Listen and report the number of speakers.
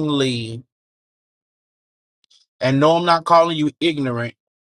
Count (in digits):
1